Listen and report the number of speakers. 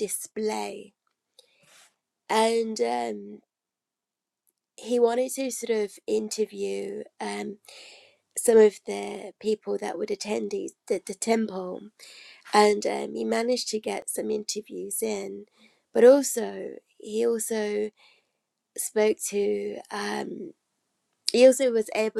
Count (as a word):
one